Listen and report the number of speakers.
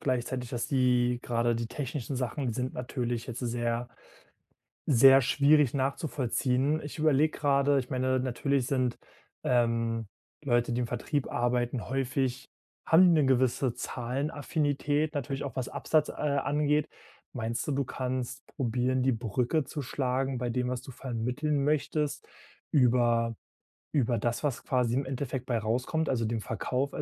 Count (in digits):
1